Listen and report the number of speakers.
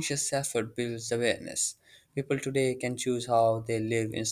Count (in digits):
1